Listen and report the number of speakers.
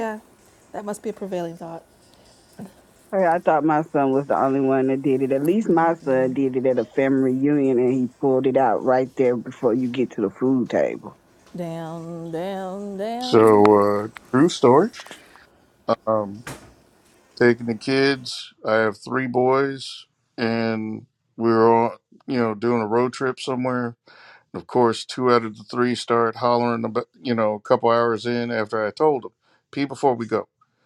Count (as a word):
three